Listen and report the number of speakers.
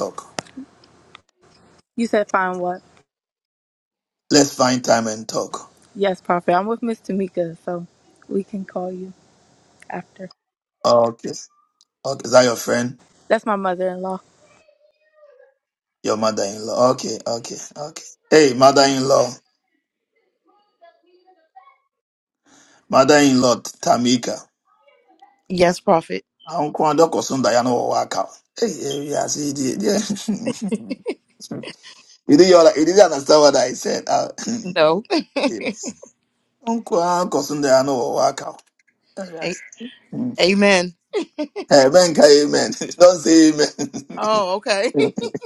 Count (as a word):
three